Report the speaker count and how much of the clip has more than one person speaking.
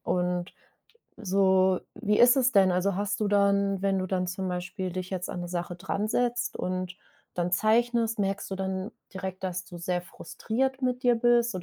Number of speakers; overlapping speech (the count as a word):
one, no overlap